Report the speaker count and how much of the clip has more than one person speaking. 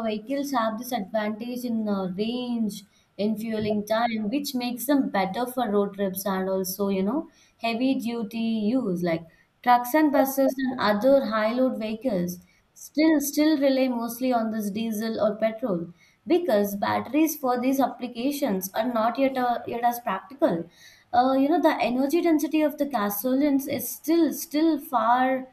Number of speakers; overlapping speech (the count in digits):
1, no overlap